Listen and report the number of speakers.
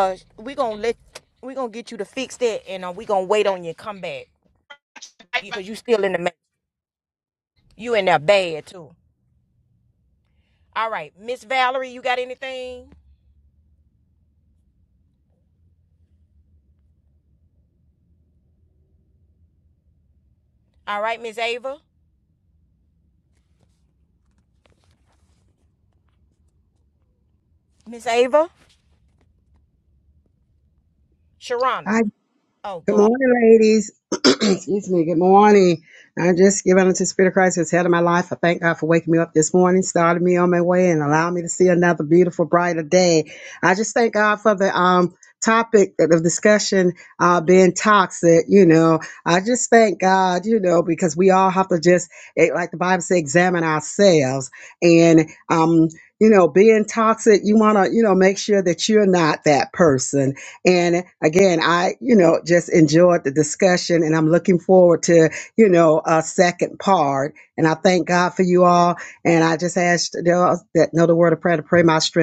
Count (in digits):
2